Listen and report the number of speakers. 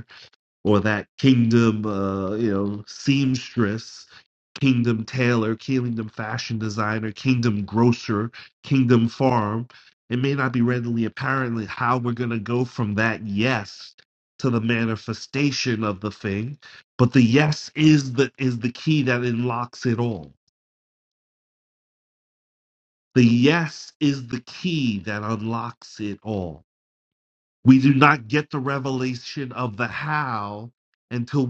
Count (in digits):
1